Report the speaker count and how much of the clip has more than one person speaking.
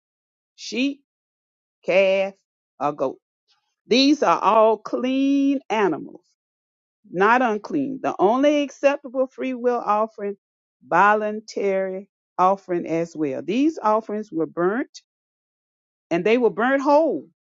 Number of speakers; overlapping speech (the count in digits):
1, no overlap